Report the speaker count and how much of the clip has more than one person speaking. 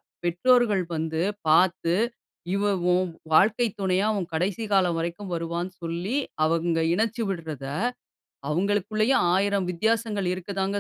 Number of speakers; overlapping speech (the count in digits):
1, no overlap